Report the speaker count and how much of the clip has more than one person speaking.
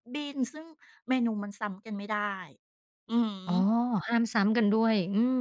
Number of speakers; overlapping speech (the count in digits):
2, no overlap